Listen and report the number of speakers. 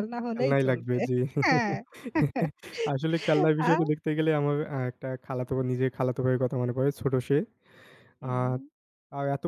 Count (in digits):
2